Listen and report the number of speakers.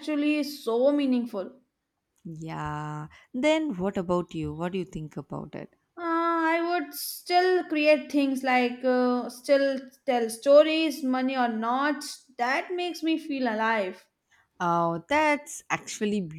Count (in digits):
2